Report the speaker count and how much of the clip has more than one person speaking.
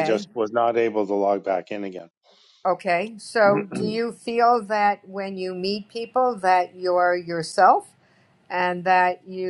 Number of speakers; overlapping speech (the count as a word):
two, about 3%